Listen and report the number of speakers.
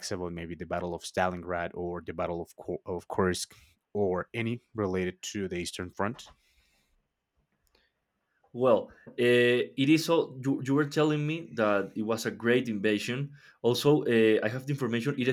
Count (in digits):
2